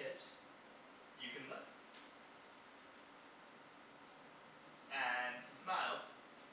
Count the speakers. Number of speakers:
one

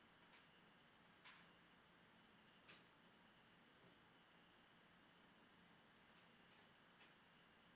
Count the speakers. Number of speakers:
zero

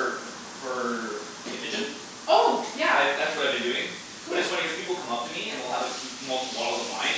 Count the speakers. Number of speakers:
two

